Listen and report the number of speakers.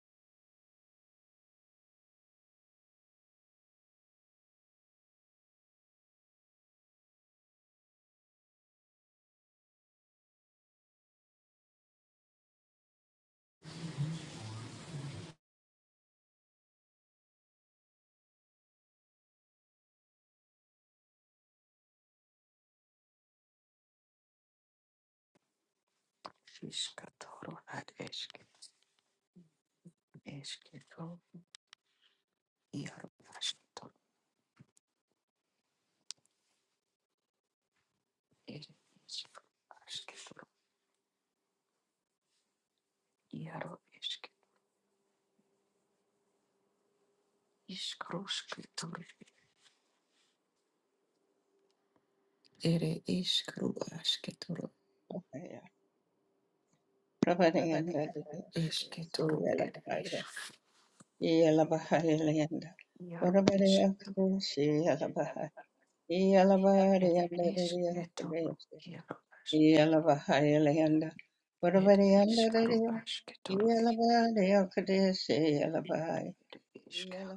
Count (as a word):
two